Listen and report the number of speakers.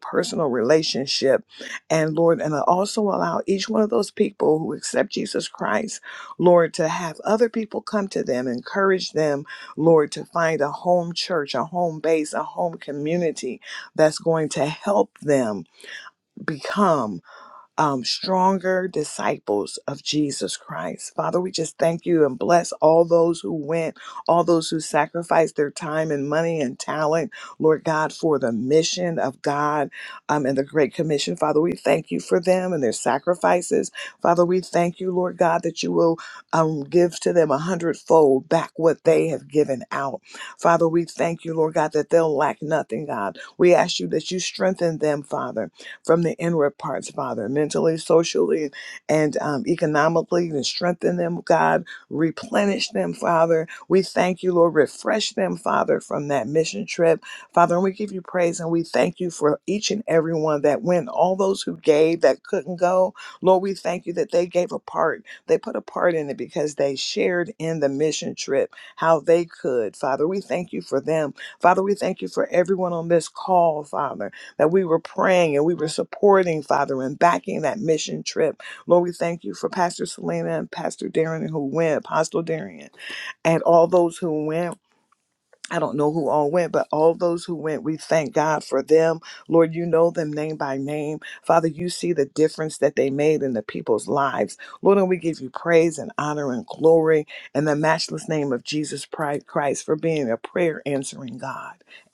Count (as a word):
one